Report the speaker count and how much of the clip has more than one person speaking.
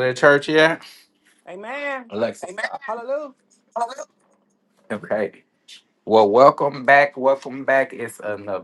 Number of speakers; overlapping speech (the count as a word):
two, no overlap